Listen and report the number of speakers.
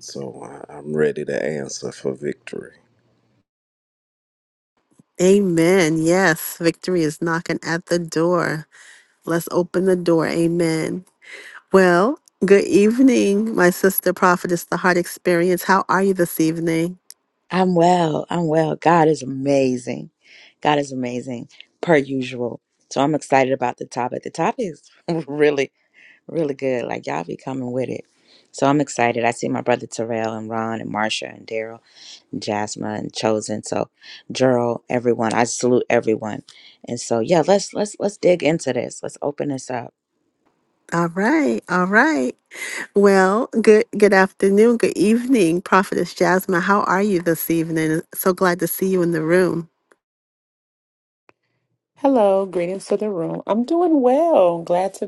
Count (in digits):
4